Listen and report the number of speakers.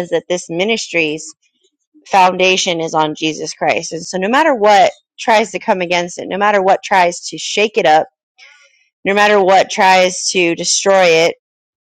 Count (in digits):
1